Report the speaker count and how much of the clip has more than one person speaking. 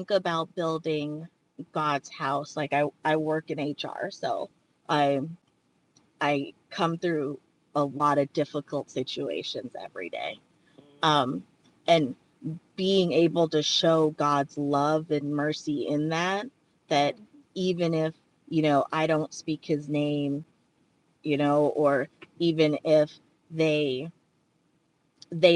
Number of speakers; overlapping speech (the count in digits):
1, no overlap